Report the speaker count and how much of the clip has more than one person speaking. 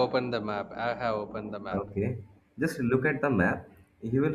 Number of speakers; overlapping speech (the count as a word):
two, about 4%